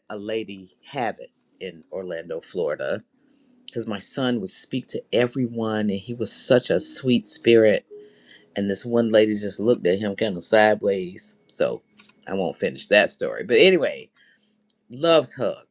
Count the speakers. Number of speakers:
1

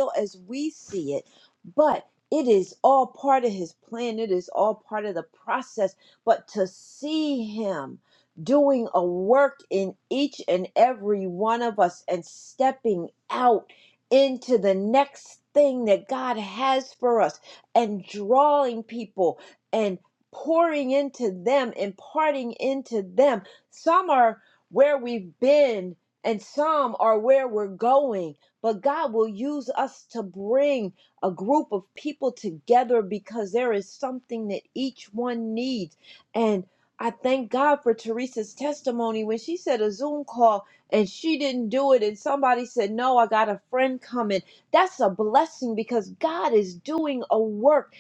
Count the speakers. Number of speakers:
1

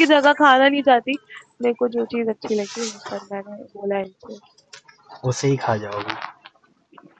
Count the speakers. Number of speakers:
2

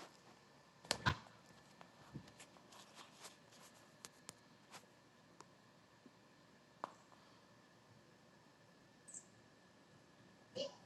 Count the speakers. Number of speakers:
0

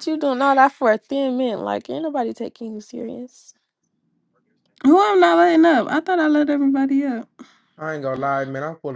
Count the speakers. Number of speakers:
3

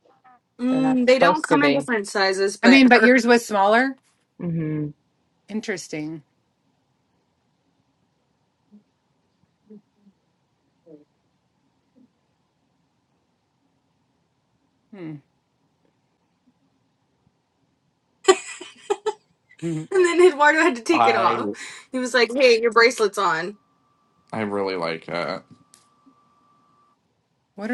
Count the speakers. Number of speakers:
4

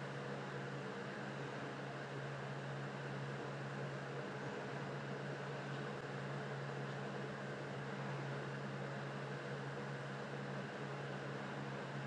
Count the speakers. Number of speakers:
0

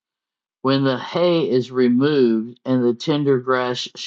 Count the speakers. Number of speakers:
1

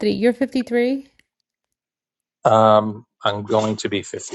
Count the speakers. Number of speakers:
2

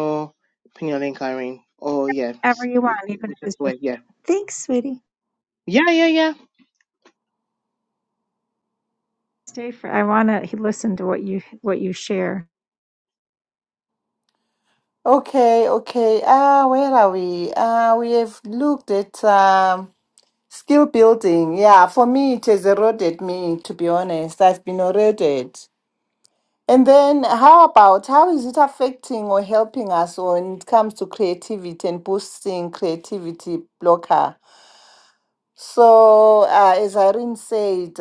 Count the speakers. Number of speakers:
3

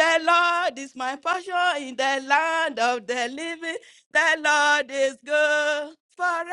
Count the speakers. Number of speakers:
1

